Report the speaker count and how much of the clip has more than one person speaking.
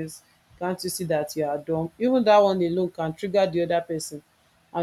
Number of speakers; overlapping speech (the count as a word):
one, no overlap